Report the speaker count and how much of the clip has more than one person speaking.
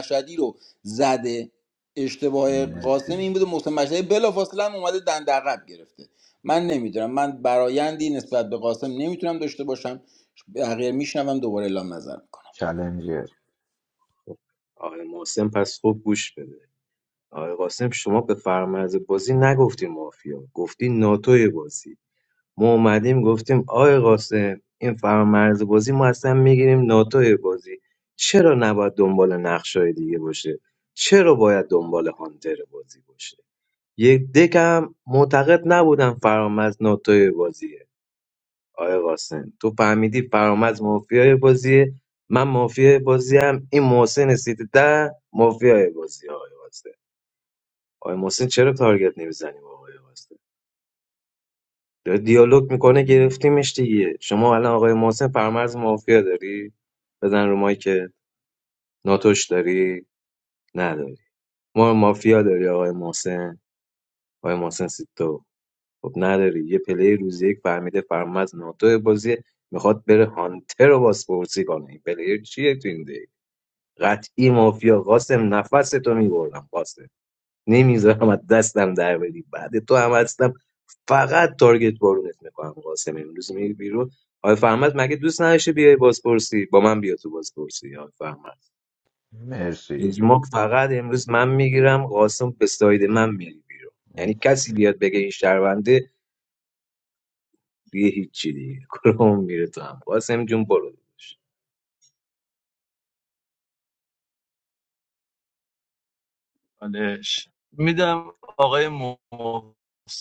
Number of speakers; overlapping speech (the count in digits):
4, about 1%